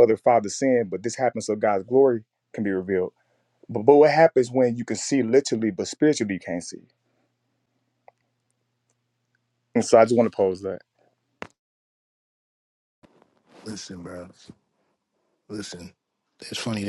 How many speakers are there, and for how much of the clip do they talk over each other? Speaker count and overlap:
two, no overlap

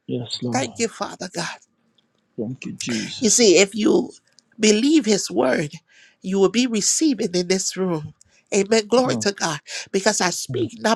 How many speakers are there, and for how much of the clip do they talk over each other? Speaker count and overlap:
two, about 9%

